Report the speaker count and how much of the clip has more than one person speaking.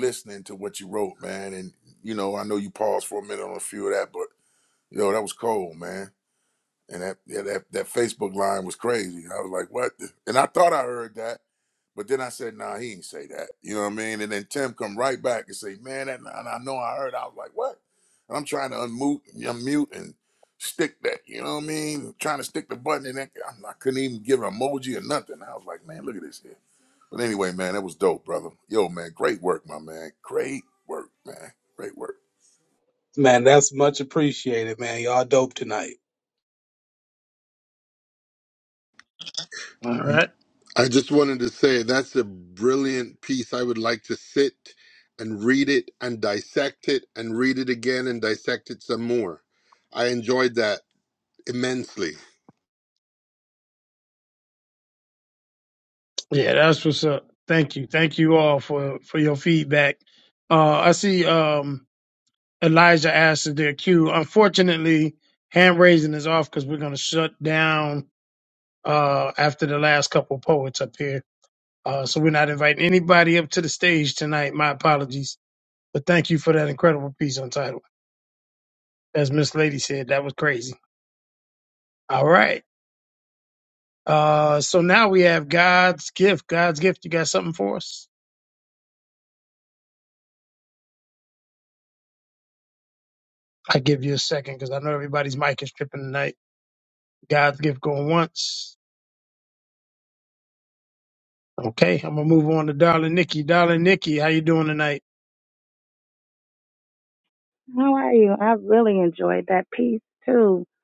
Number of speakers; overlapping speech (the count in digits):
5, no overlap